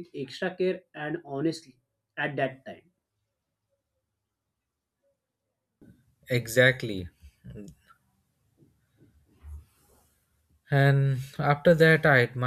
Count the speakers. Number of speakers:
two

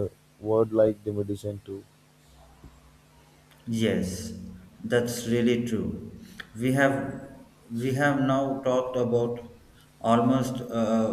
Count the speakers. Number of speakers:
two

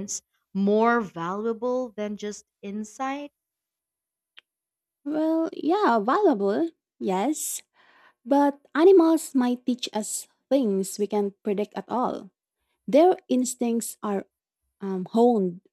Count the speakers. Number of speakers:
two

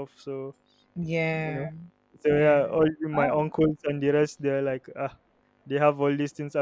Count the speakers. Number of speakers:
two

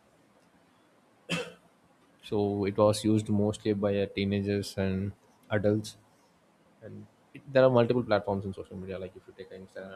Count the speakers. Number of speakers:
one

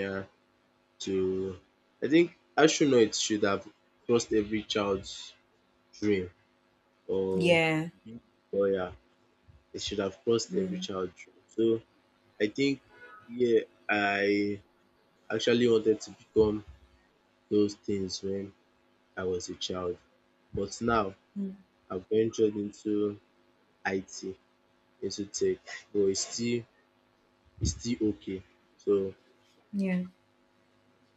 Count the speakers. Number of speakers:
two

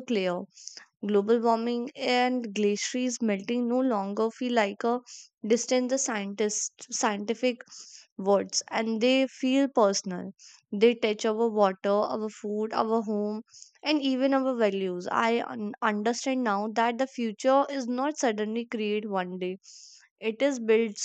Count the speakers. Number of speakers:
one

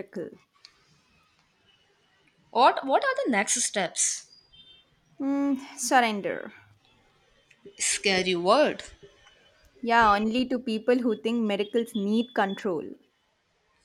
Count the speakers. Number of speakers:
two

